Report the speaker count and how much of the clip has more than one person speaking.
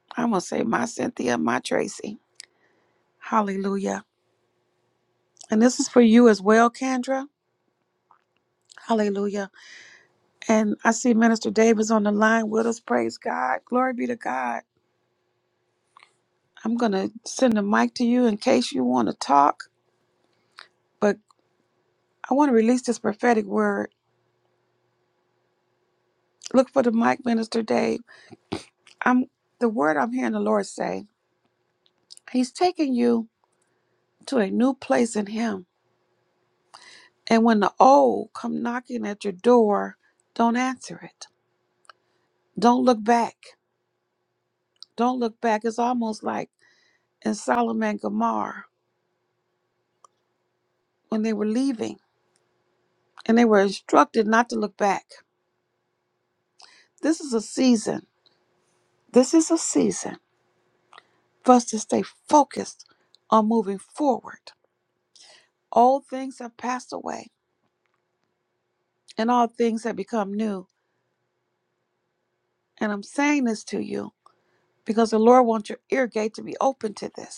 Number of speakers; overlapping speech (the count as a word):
one, no overlap